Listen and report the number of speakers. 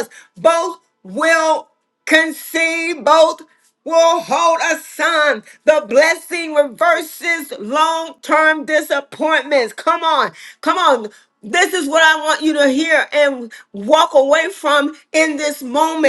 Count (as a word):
one